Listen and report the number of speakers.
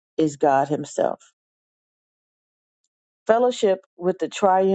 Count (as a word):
one